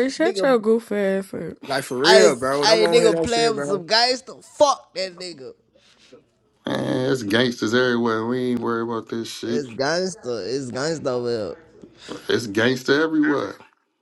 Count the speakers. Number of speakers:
four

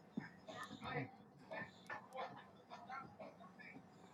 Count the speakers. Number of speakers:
zero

